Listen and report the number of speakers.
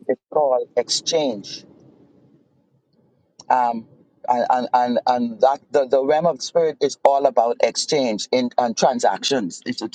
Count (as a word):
one